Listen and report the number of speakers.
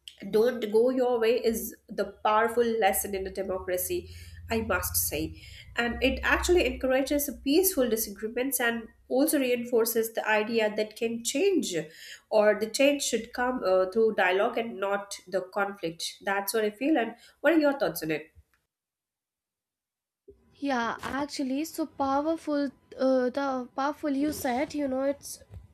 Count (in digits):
2